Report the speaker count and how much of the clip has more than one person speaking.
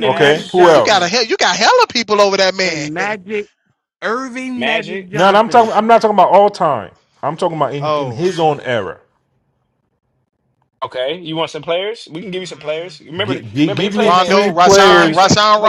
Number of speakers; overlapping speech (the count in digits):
4, about 35%